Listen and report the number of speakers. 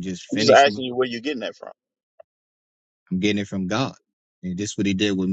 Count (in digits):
2